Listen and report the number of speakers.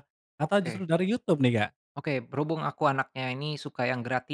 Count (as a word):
two